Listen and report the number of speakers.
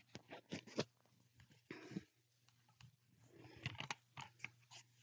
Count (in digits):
0